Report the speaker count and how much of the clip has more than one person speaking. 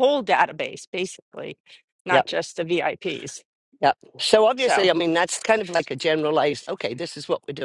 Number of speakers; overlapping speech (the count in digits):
2, about 5%